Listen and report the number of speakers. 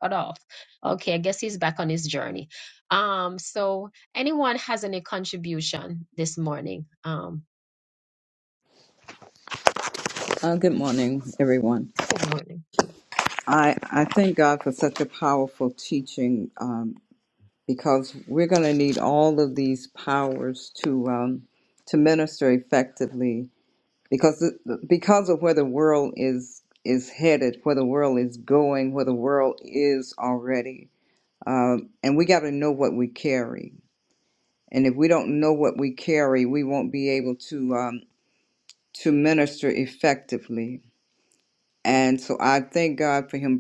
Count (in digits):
2